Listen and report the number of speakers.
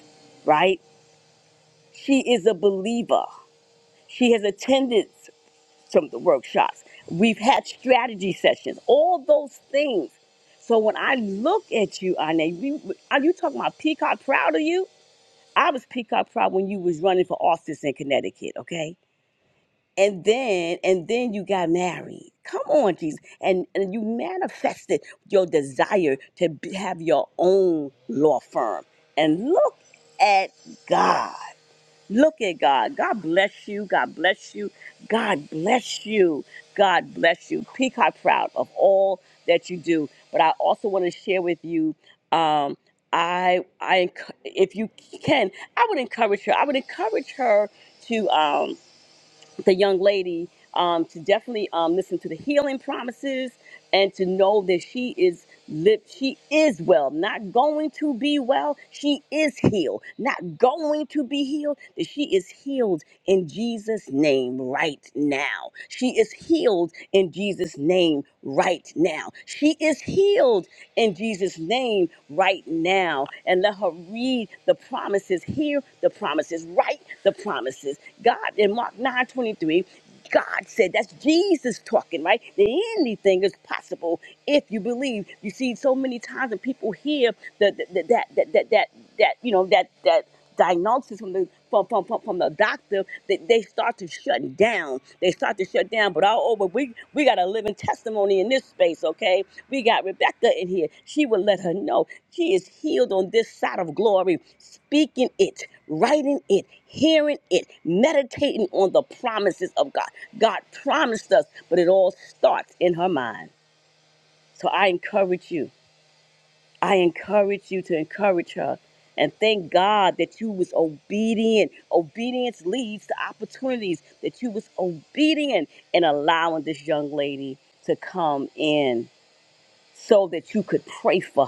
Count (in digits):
1